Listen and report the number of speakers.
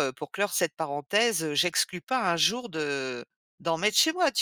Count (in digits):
1